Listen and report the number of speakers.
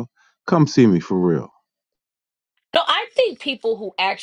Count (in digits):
2